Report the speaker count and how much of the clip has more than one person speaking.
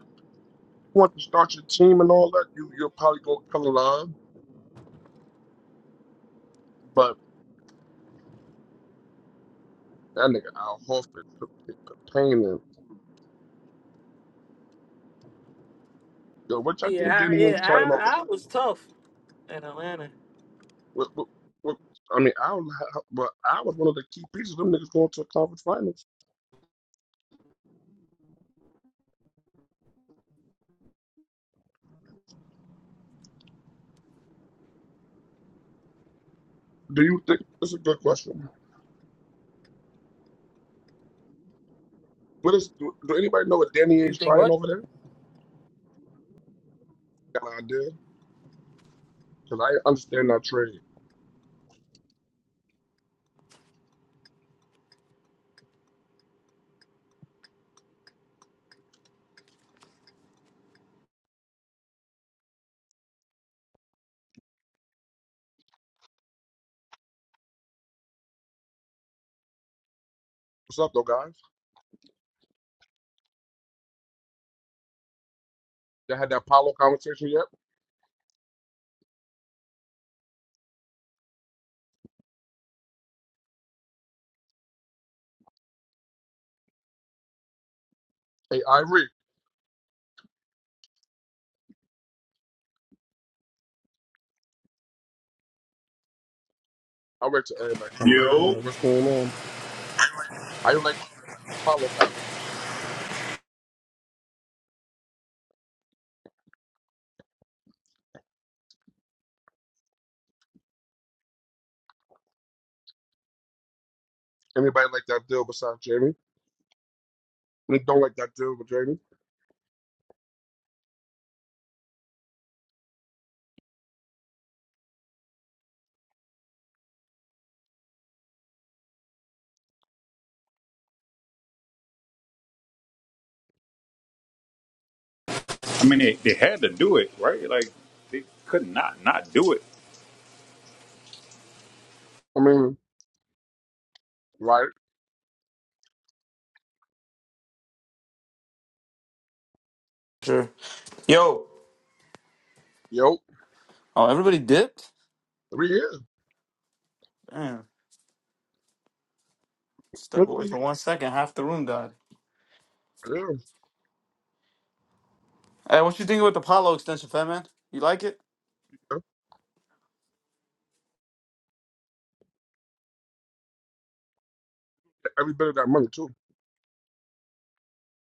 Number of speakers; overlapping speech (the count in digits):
4, about 2%